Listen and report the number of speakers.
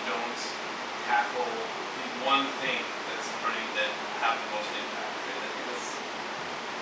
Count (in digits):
1